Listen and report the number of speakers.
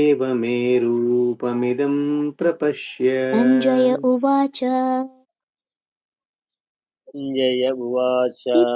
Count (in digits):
3